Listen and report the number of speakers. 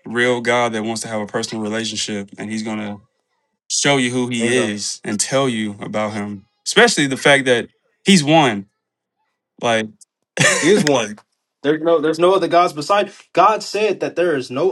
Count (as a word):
two